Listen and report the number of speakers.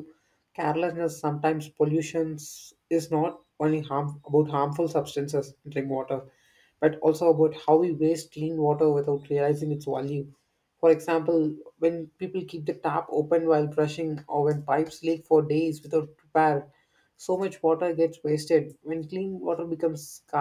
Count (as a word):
one